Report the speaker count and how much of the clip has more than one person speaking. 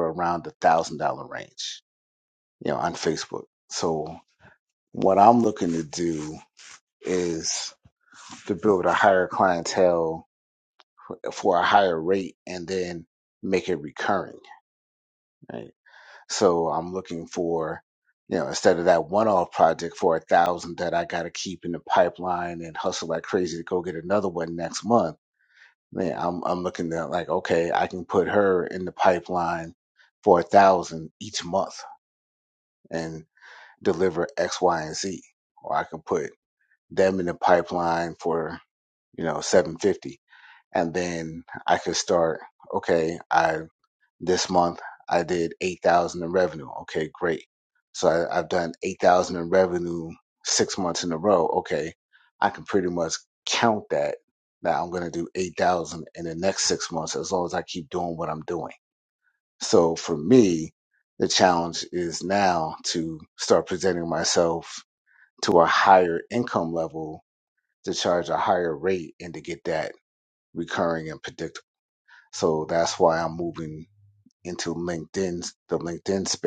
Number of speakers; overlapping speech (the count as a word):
one, no overlap